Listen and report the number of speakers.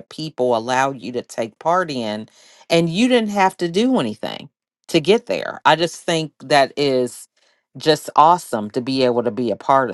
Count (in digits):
1